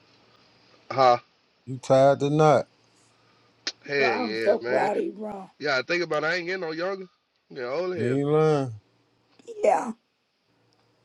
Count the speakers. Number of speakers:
three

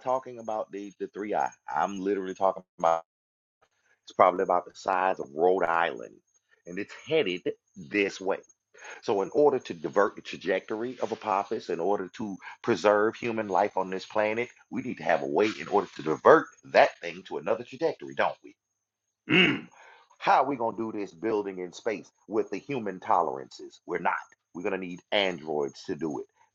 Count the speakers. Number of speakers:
one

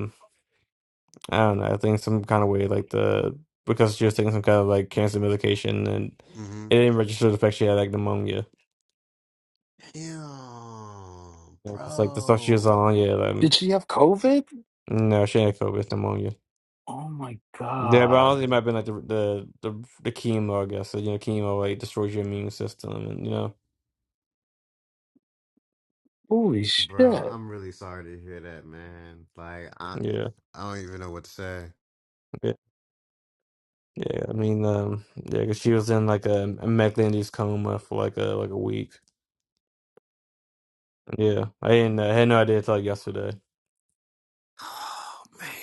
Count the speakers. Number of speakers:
three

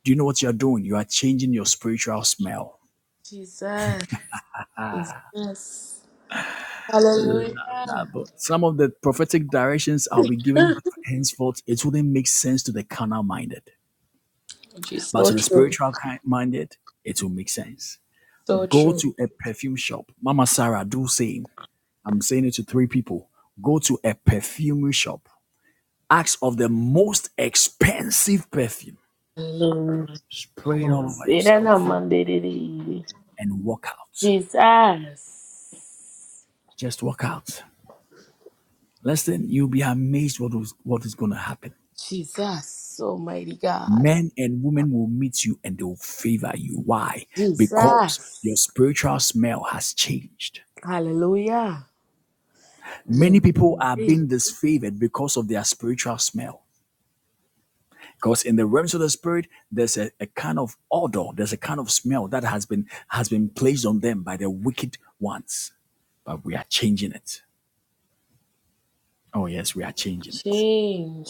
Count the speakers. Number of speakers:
two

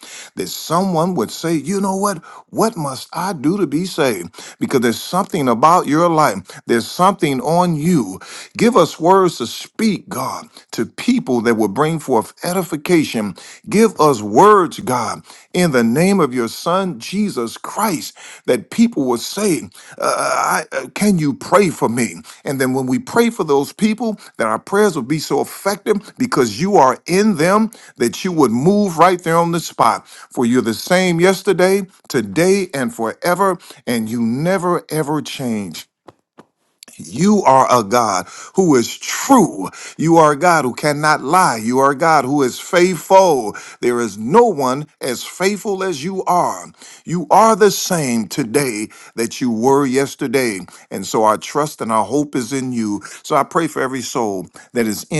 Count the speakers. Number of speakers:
one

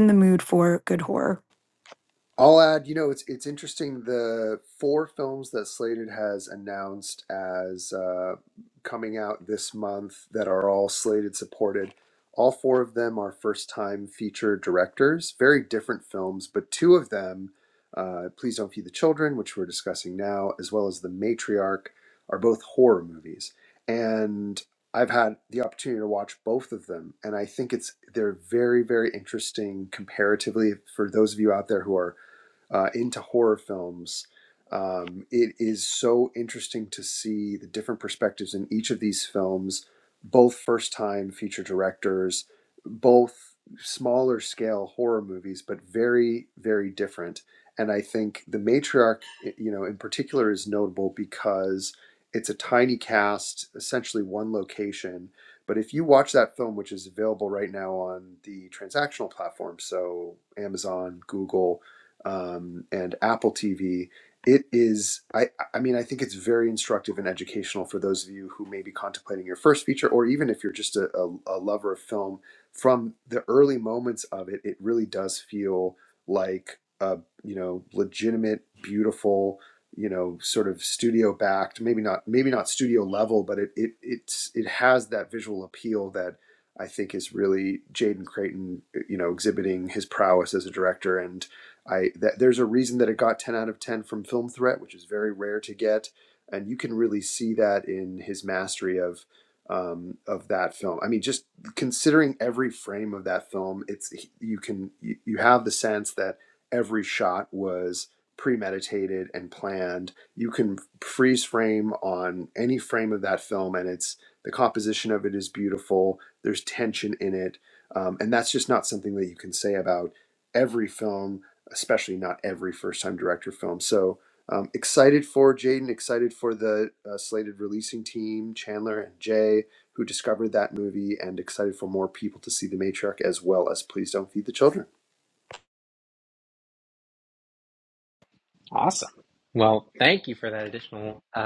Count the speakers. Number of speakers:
three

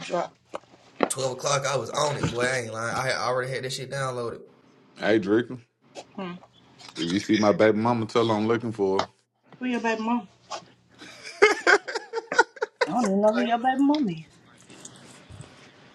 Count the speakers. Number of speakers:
three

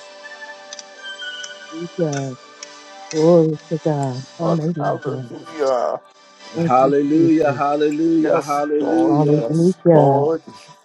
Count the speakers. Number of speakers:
three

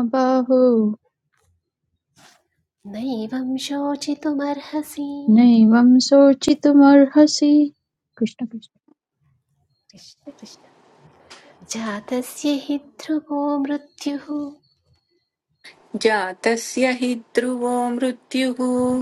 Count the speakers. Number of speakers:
three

